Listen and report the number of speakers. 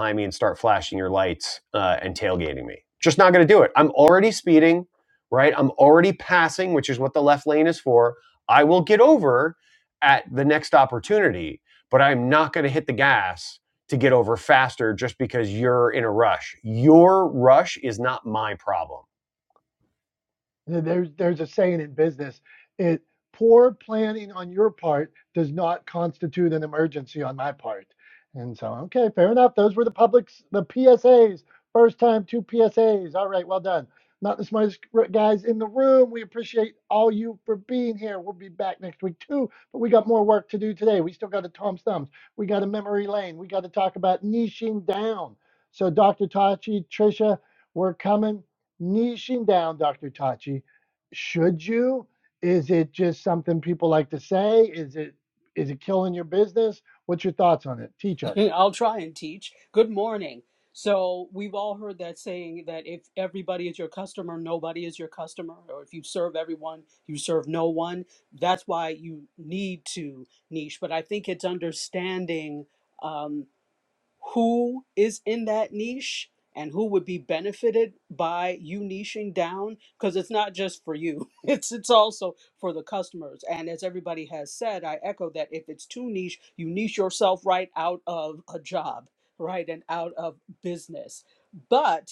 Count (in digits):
3